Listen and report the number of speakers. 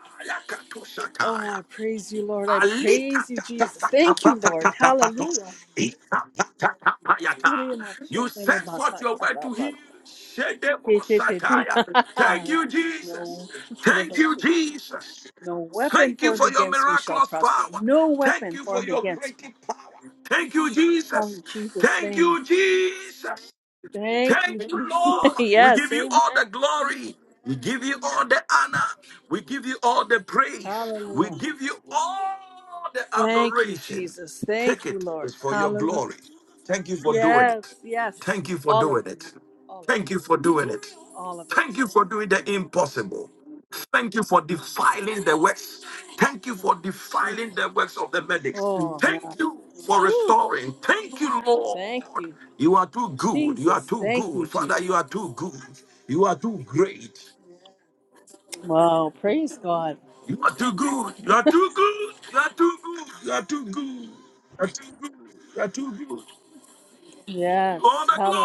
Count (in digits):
2